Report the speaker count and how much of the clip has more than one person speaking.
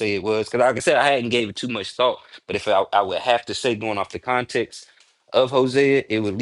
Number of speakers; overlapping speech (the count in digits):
1, no overlap